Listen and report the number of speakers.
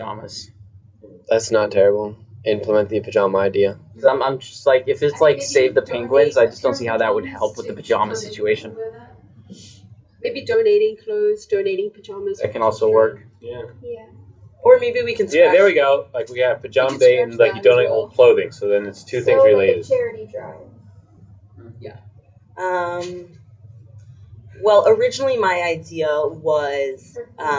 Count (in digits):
6